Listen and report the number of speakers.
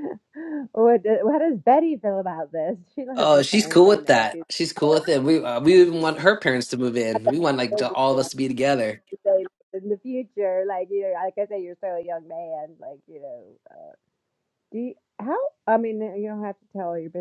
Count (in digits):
2